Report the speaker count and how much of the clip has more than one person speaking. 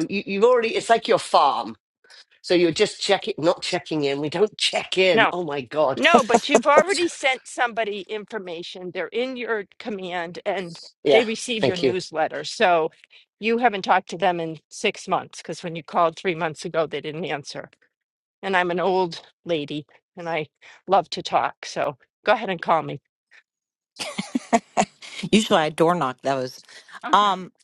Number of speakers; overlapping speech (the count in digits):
3, about 3%